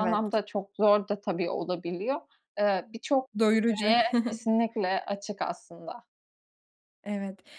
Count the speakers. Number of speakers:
2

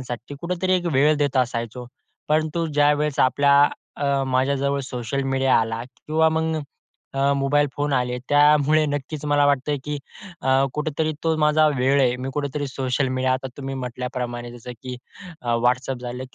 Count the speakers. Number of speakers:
1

